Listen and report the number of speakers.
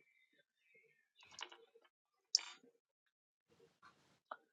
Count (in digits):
0